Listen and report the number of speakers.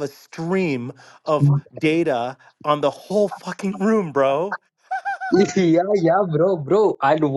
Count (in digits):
2